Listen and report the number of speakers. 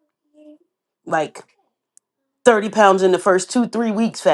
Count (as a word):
one